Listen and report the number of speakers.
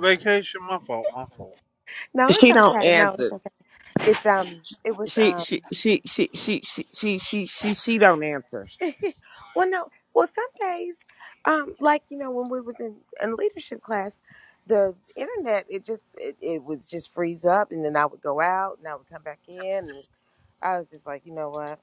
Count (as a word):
three